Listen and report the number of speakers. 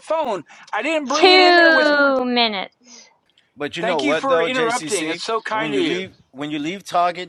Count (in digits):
3